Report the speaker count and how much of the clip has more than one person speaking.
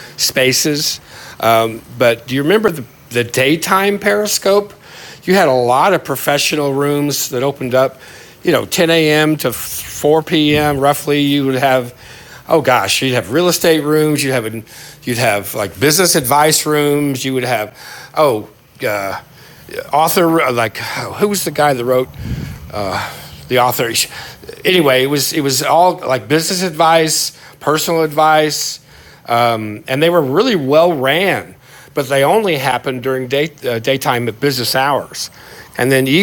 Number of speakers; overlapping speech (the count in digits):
1, no overlap